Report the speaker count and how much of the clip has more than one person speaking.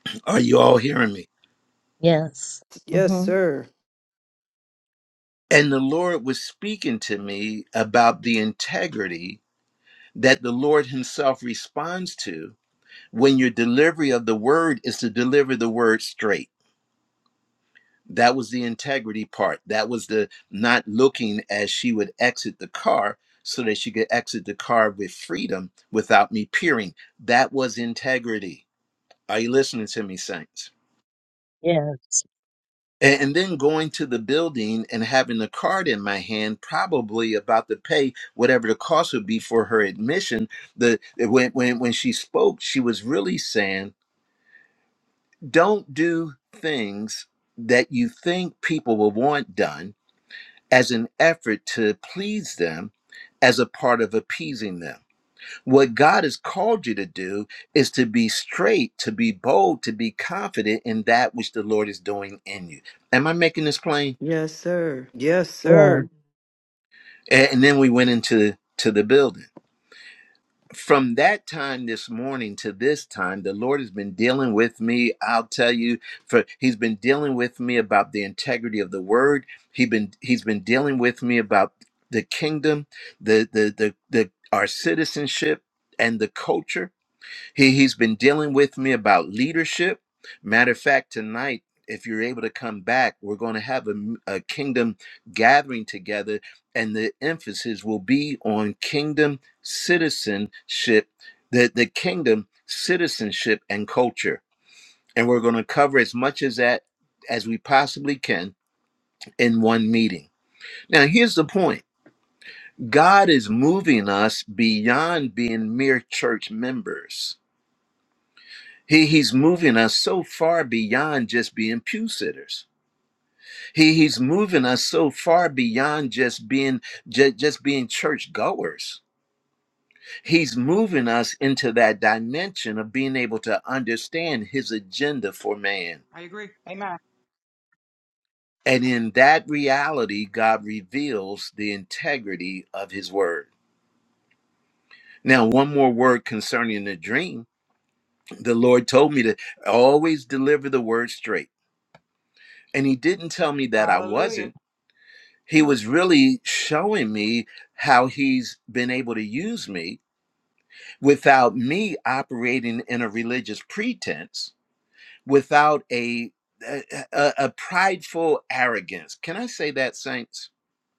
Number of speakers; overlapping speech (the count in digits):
4, about 1%